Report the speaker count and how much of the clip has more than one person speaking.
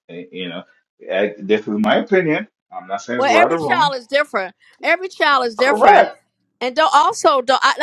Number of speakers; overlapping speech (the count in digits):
2, about 15%